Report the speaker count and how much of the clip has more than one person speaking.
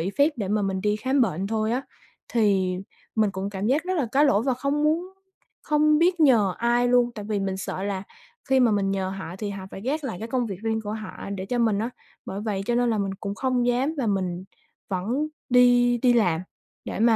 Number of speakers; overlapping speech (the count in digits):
1, no overlap